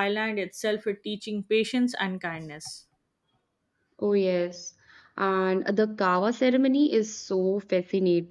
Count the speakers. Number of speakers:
2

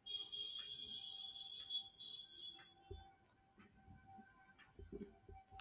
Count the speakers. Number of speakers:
0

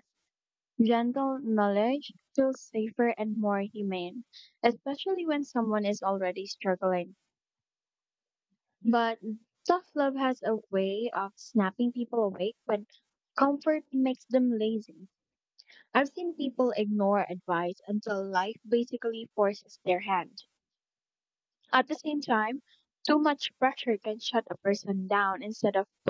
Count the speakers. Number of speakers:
1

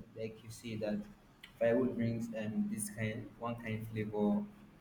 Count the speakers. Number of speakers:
1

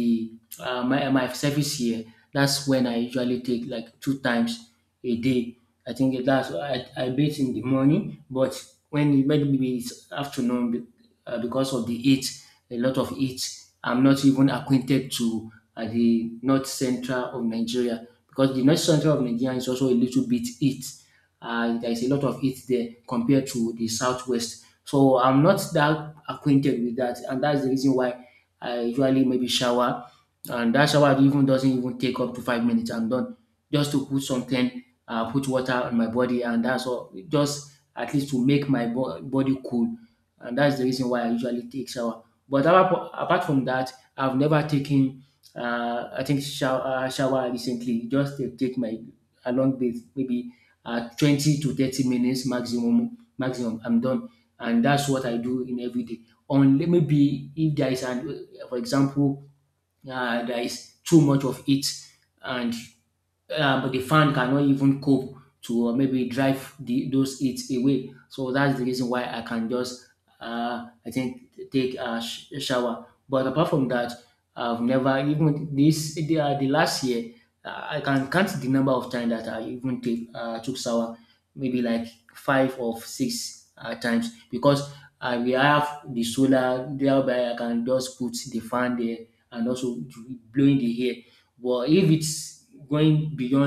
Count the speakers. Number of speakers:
1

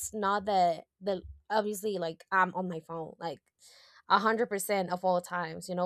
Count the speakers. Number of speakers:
1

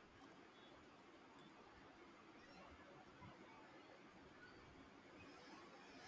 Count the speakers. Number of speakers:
0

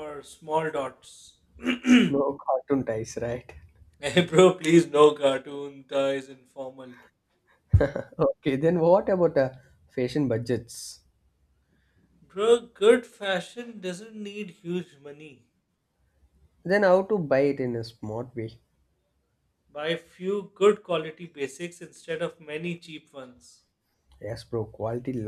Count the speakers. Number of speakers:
2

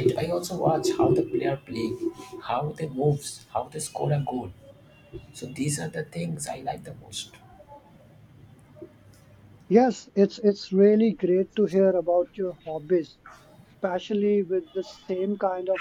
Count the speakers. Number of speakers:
2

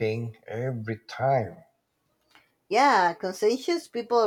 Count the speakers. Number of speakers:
2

